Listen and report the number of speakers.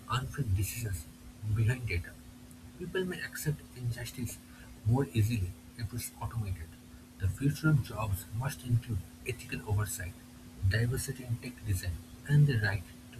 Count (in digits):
1